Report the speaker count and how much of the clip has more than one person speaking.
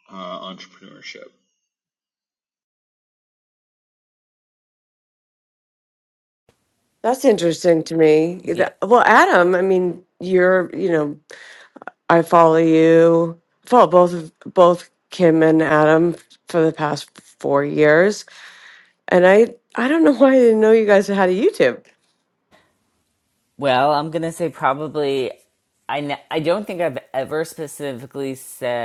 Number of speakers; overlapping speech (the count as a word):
three, about 1%